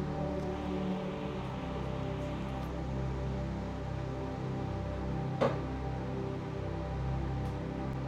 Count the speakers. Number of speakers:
zero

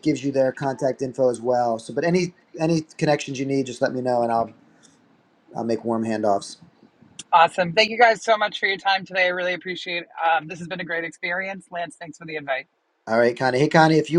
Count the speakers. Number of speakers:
two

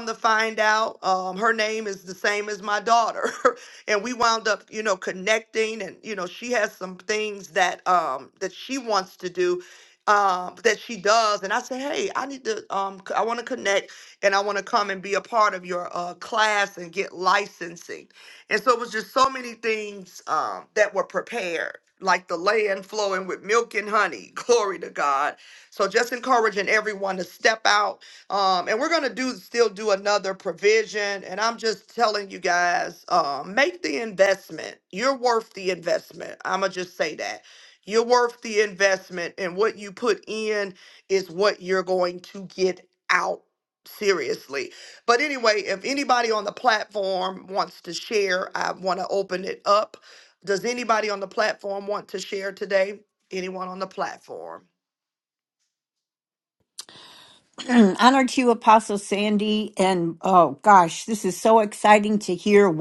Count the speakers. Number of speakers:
two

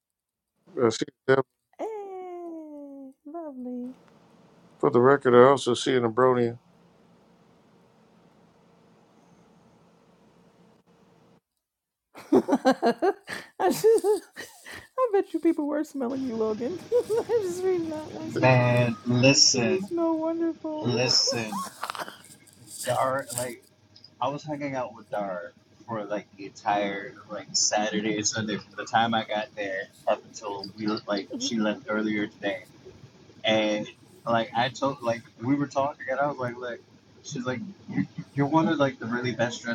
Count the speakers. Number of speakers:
three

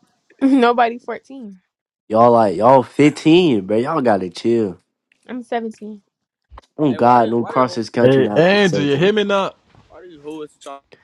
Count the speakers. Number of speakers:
four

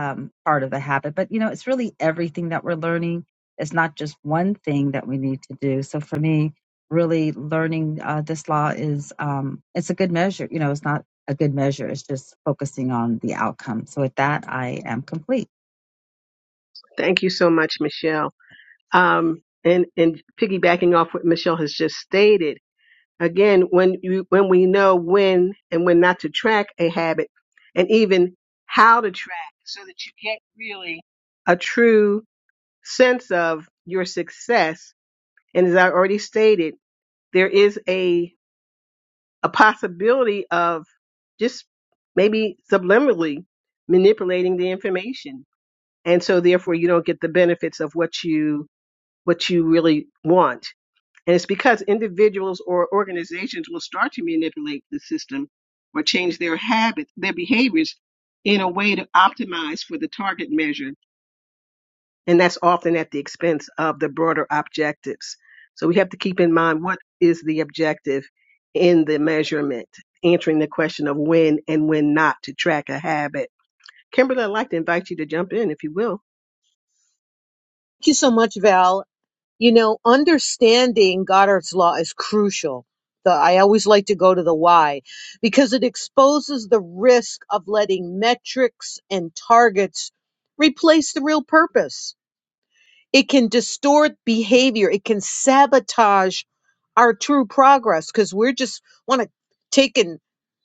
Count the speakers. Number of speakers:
three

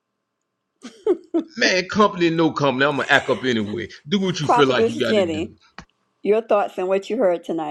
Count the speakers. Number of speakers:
two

